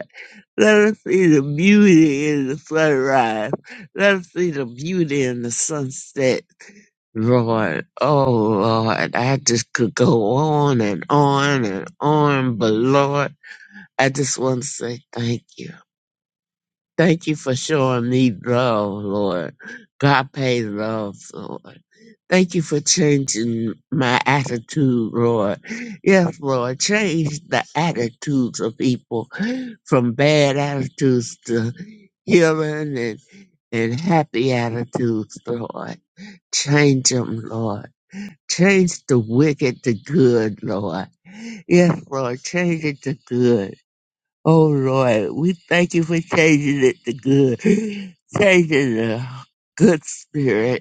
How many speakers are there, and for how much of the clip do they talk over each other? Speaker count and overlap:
1, no overlap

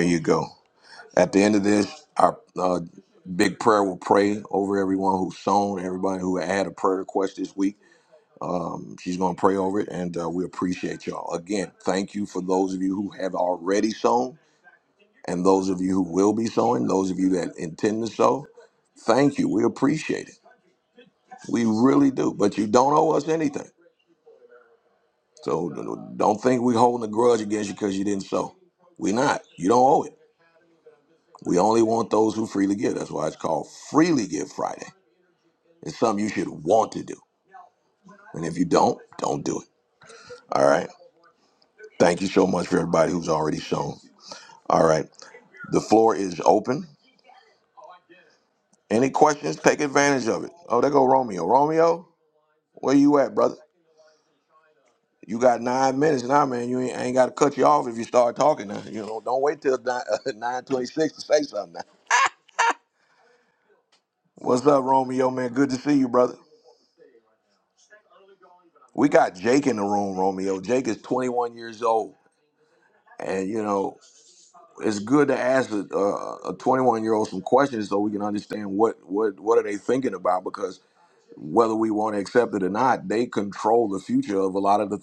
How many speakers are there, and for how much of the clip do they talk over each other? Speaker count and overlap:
1, no overlap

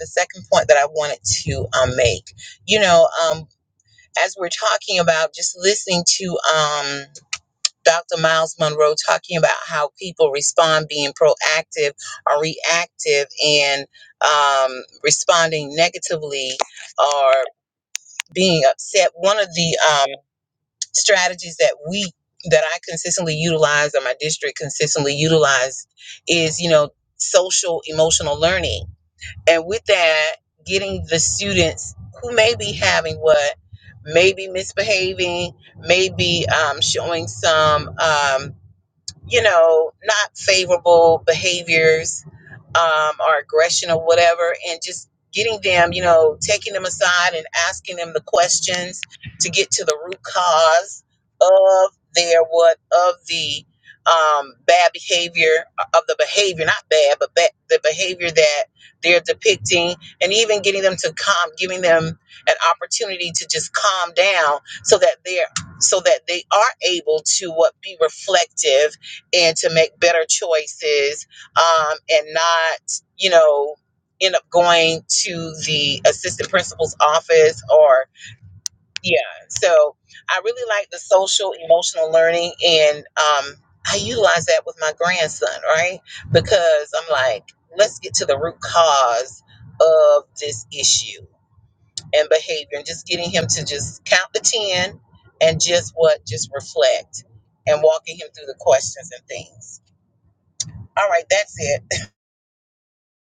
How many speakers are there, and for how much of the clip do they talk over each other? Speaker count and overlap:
1, no overlap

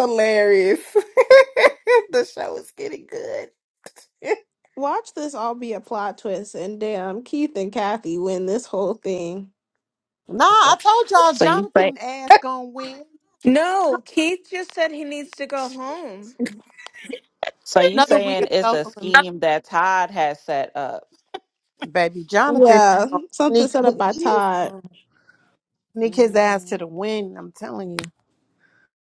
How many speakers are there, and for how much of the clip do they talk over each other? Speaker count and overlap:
5, about 14%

